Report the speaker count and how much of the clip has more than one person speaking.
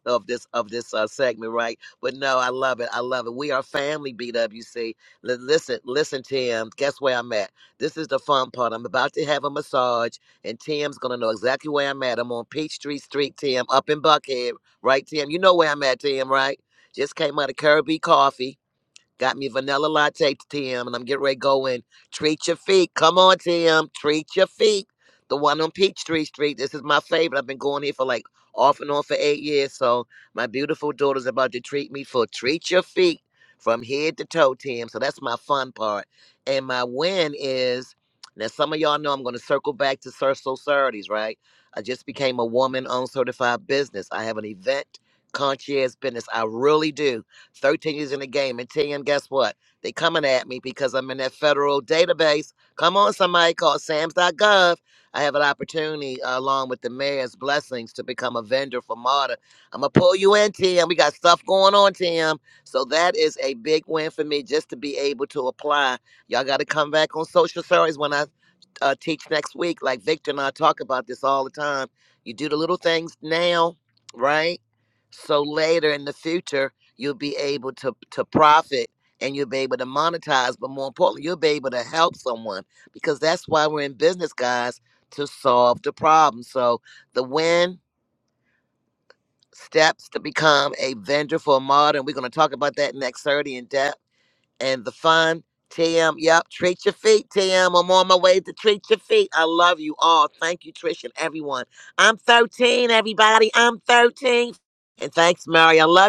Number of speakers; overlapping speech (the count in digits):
1, no overlap